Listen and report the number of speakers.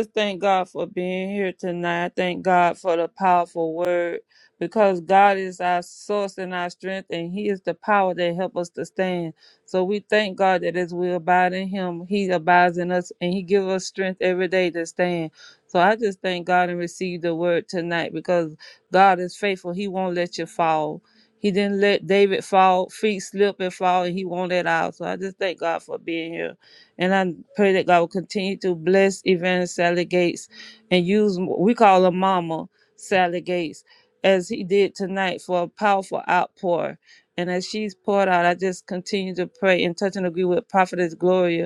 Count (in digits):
1